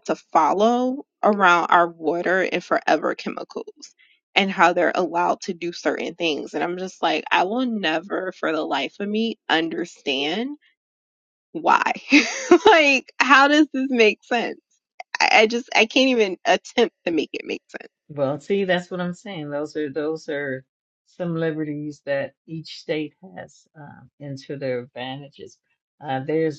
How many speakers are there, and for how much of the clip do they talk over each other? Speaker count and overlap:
2, no overlap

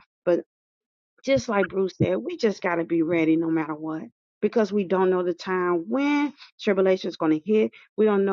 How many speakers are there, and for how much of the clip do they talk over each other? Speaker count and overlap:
1, no overlap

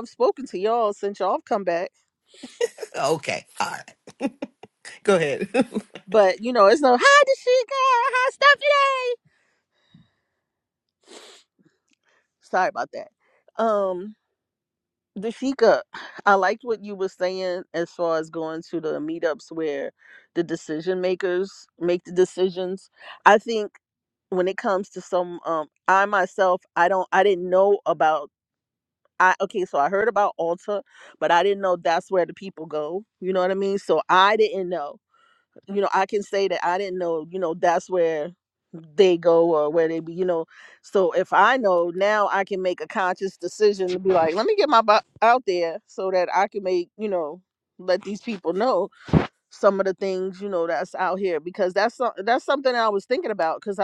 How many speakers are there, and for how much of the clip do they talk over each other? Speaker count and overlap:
2, no overlap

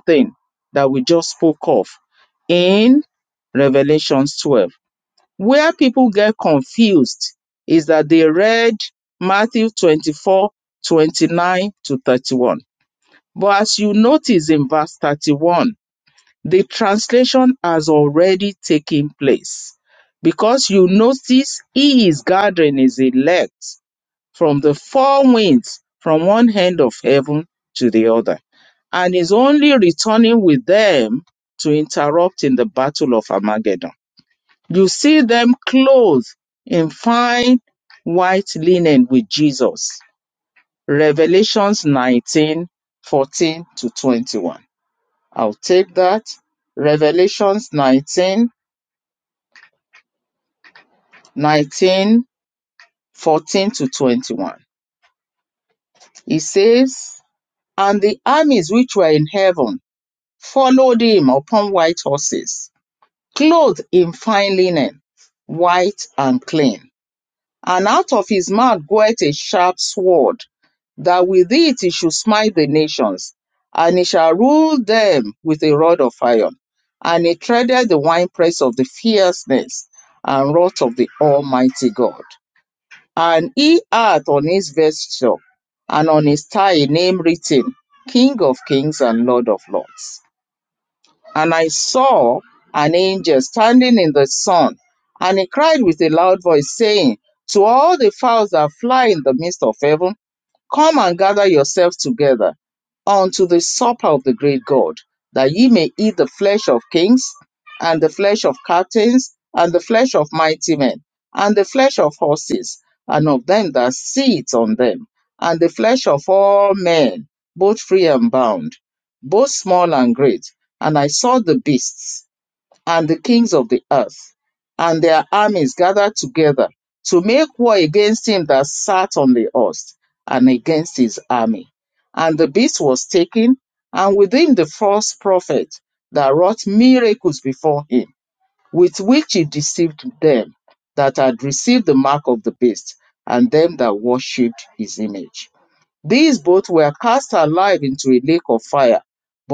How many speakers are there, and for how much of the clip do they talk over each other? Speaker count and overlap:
1, no overlap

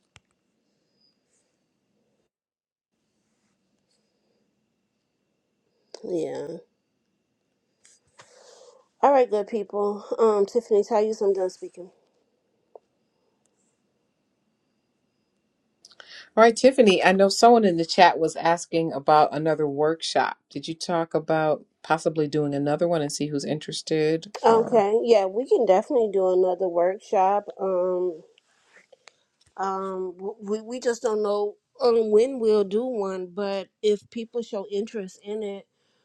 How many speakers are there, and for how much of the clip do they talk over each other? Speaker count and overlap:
2, about 1%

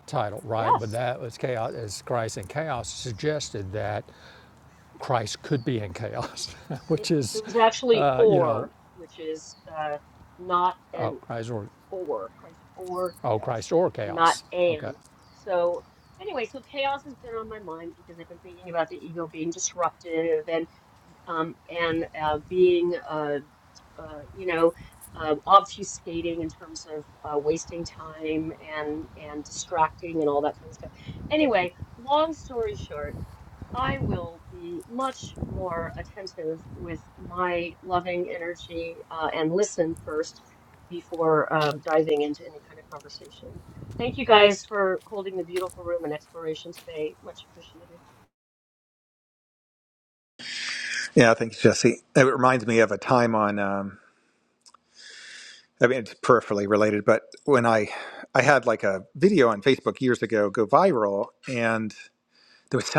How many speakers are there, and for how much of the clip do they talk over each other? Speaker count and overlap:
3, about 5%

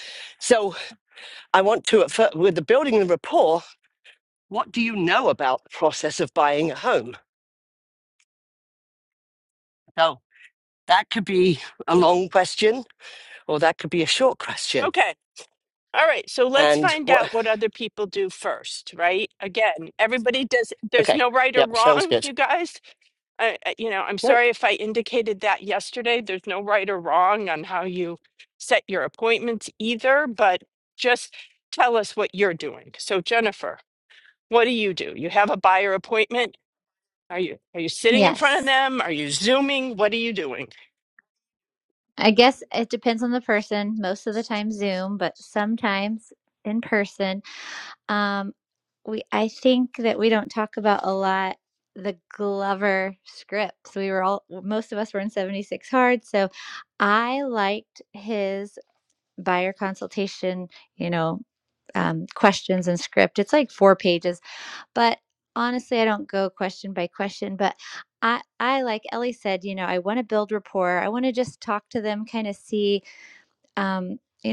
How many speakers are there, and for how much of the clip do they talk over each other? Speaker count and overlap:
3, about 4%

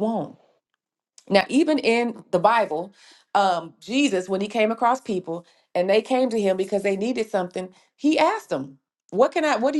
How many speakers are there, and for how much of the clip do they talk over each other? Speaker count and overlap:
1, no overlap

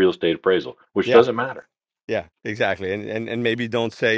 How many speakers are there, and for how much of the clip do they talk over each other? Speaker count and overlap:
2, about 4%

